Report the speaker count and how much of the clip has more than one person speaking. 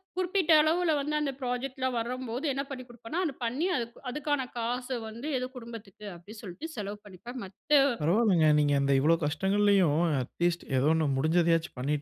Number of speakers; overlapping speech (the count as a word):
two, under 1%